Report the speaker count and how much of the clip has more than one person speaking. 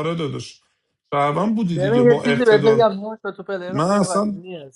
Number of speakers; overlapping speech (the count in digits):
2, about 39%